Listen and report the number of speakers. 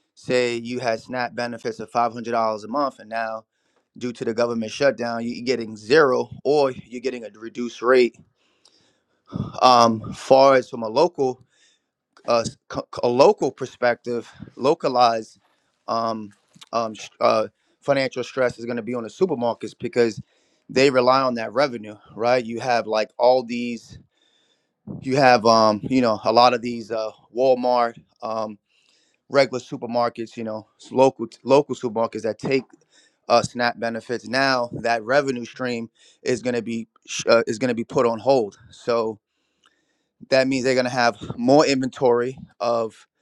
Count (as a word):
one